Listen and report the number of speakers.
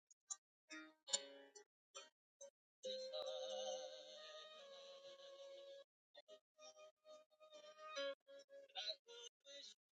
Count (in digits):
0